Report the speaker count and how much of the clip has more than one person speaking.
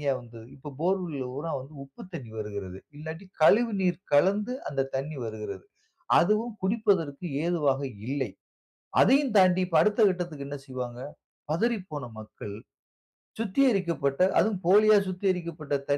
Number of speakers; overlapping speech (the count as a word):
one, no overlap